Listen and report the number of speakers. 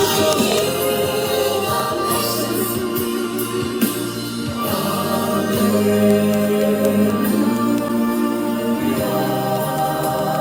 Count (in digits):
0